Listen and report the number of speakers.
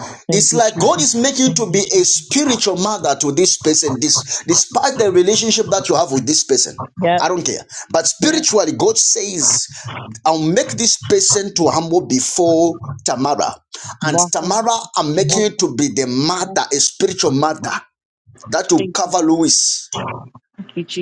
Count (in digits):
2